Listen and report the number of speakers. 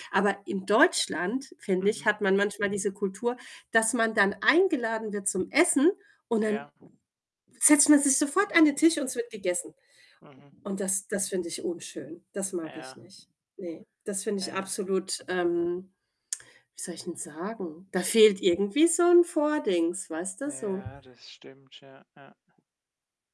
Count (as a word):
two